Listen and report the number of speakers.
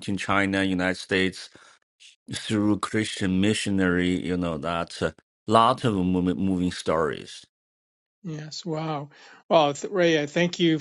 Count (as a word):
two